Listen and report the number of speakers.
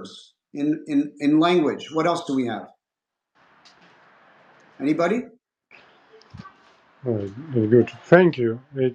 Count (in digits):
2